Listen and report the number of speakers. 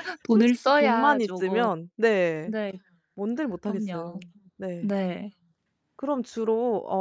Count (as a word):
two